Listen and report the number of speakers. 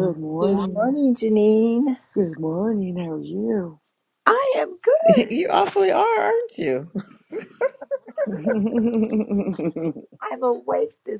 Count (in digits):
3